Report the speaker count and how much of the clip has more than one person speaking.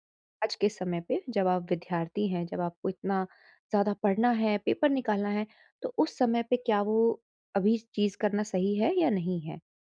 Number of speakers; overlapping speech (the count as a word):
one, no overlap